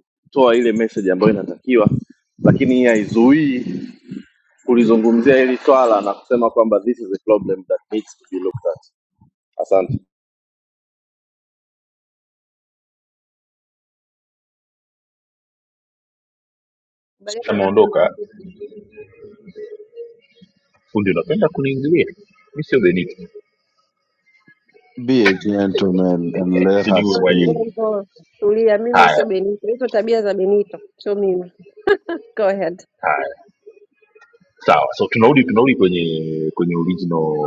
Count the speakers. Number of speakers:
four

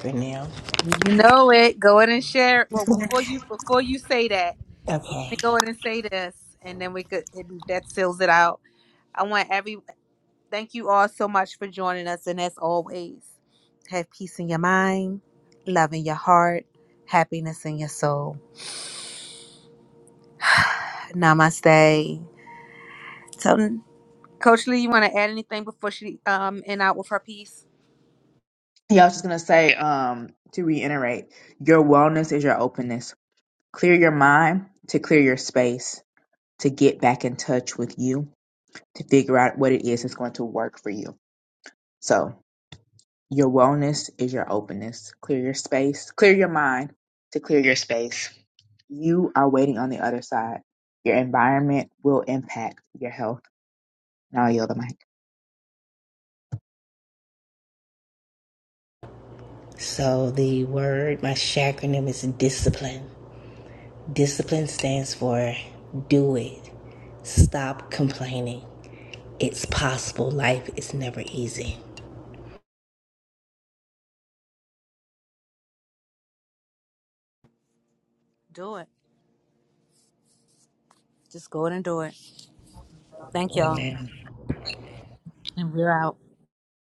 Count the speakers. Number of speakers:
three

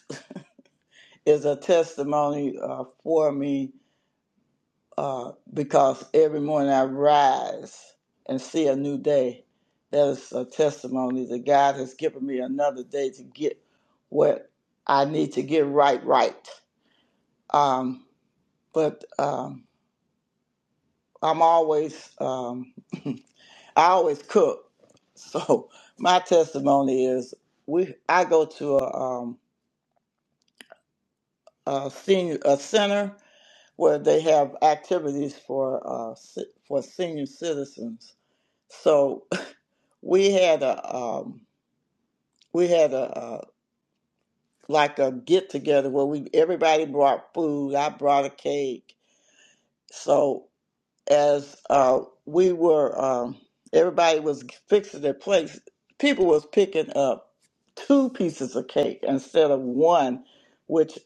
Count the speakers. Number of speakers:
one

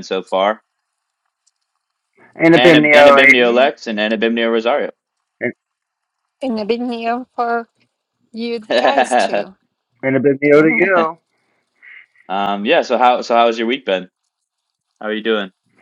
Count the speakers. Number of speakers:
three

